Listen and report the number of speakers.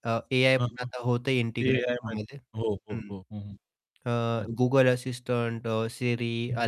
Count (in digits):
2